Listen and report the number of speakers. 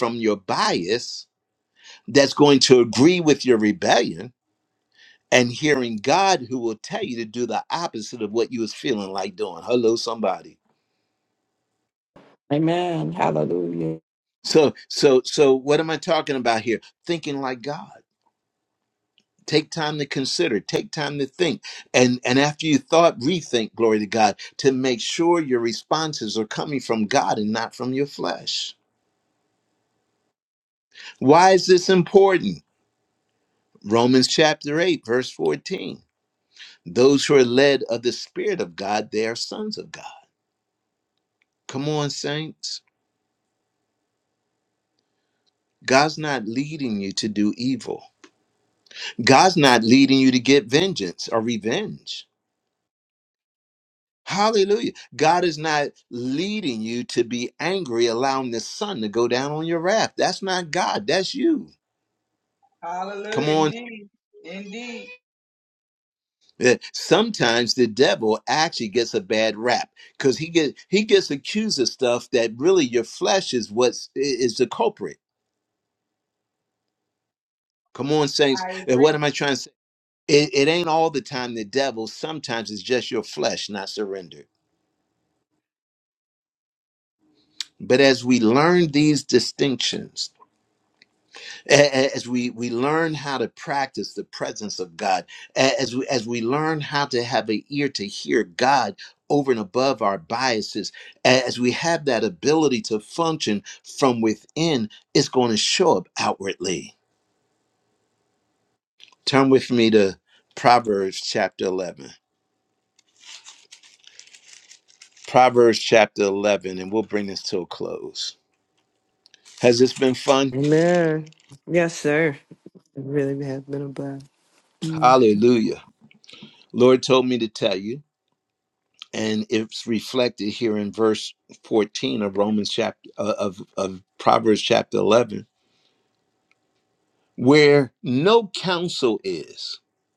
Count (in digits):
4